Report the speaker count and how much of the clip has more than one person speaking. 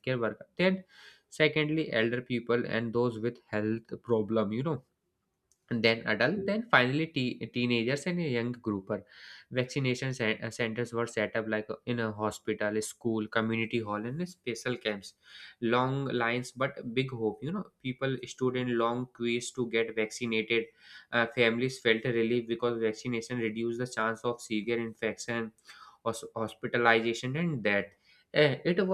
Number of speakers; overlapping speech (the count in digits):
1, no overlap